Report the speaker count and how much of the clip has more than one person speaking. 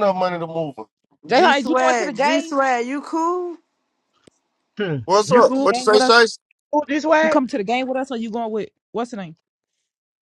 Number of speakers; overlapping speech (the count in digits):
4, about 24%